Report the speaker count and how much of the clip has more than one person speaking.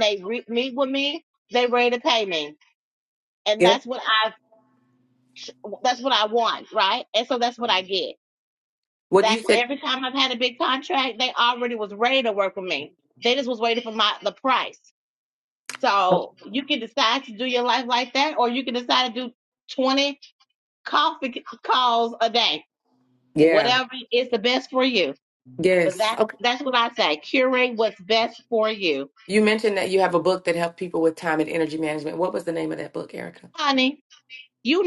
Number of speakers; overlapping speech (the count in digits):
2, about 4%